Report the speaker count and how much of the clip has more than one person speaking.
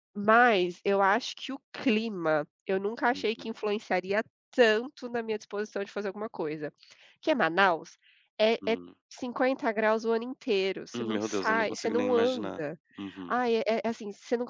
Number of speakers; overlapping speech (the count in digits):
2, about 15%